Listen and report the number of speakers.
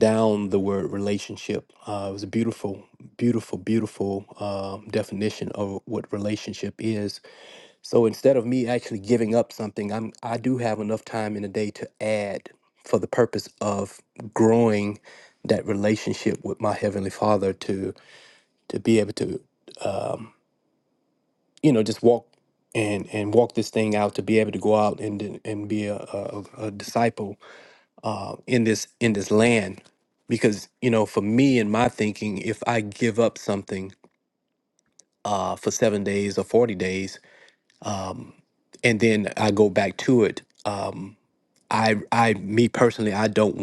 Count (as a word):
one